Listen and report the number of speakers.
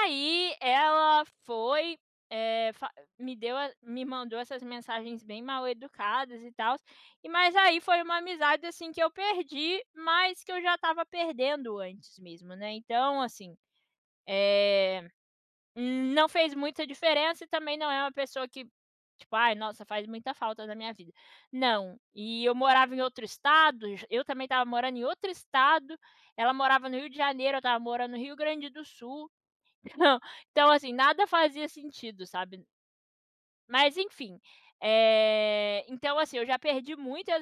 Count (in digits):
1